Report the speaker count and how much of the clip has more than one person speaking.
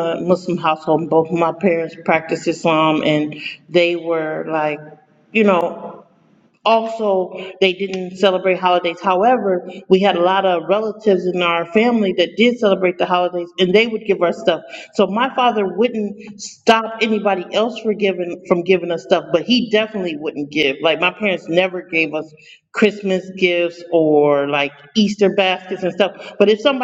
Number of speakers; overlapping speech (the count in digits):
1, no overlap